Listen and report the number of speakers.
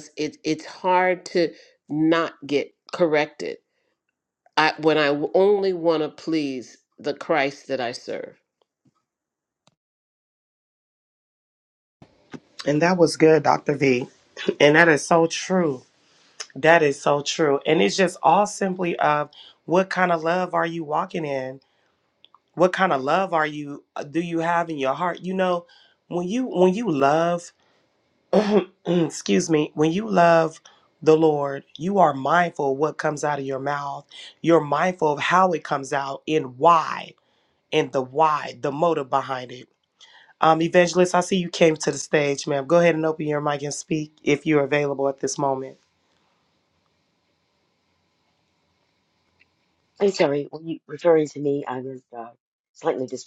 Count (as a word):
three